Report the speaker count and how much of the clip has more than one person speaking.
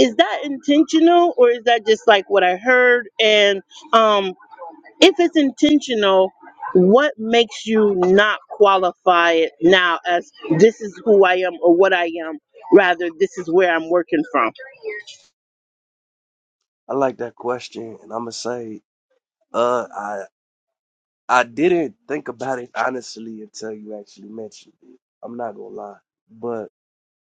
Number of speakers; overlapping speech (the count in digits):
2, no overlap